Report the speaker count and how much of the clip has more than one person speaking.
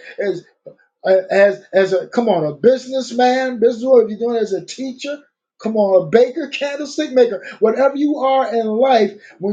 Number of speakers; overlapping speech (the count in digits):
1, no overlap